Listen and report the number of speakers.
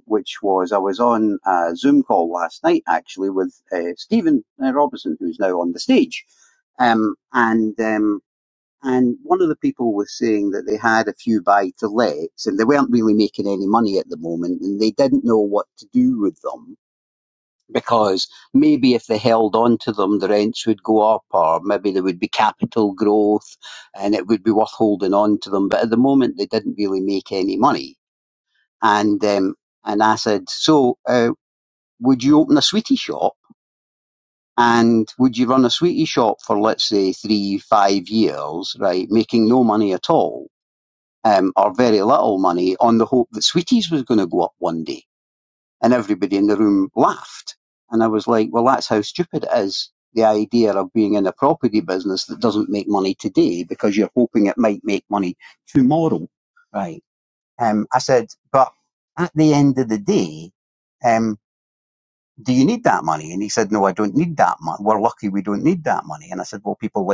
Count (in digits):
1